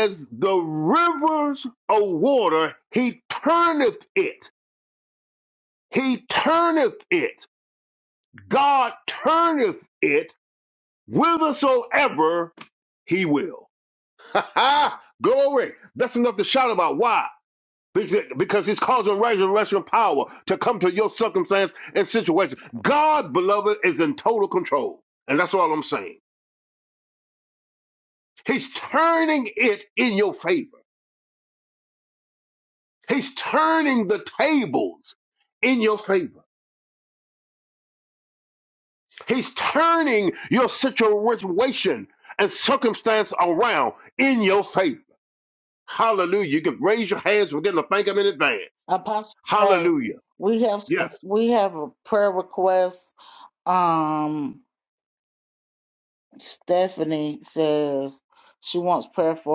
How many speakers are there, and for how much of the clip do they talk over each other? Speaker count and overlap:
2, about 1%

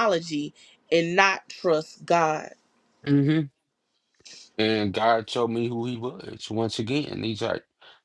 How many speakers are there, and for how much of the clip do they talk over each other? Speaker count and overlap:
2, no overlap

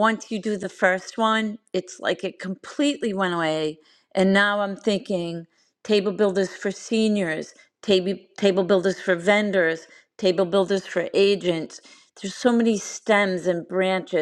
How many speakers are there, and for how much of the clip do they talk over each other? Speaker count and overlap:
1, no overlap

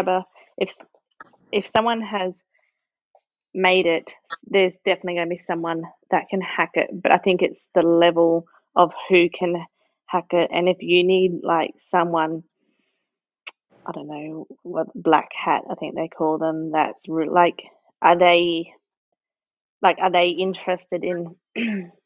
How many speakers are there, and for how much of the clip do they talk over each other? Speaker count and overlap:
1, no overlap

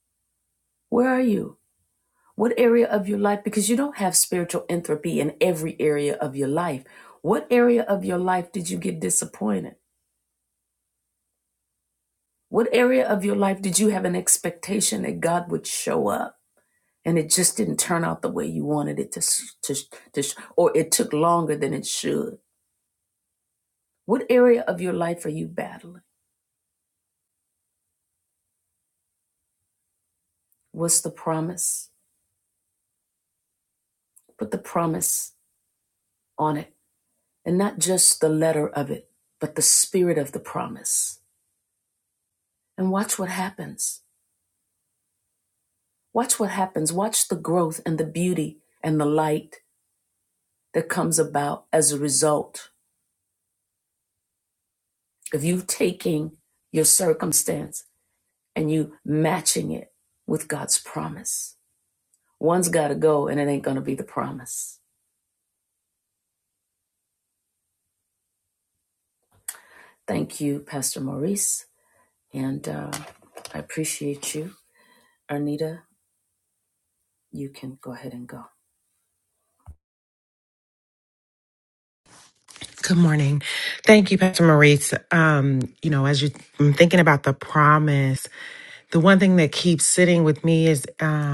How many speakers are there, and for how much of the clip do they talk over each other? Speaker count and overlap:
2, no overlap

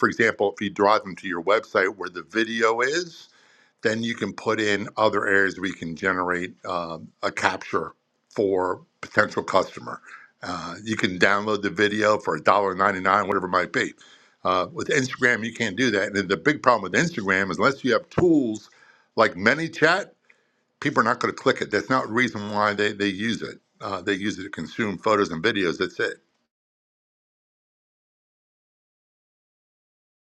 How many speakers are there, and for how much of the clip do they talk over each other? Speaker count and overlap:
1, no overlap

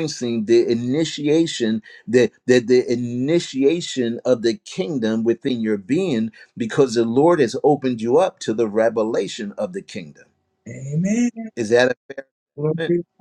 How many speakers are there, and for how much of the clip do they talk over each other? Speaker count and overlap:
2, about 1%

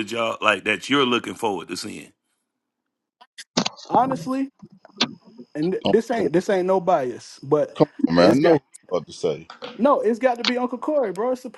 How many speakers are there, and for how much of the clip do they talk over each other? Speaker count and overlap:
3, about 8%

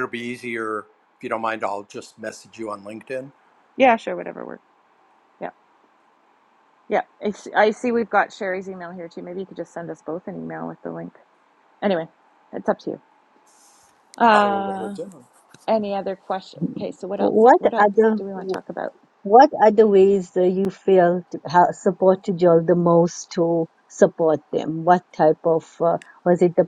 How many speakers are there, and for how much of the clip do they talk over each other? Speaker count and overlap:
3, about 6%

